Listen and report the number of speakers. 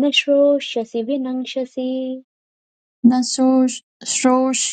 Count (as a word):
two